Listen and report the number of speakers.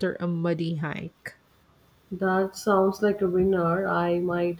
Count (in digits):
2